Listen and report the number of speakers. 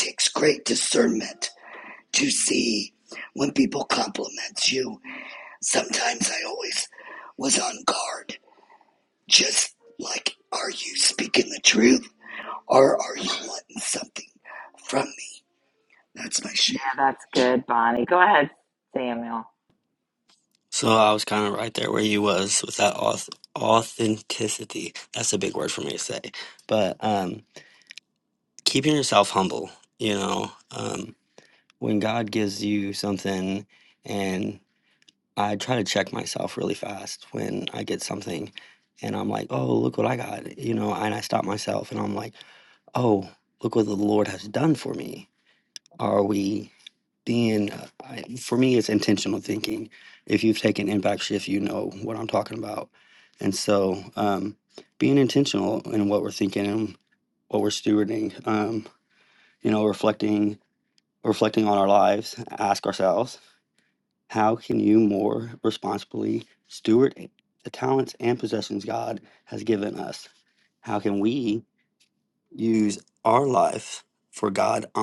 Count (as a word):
three